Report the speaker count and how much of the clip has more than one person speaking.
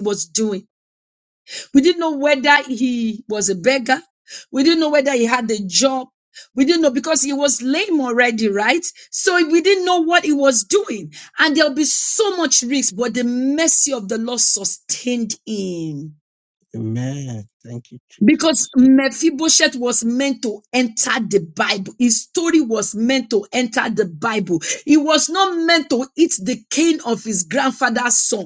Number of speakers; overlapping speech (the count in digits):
2, about 1%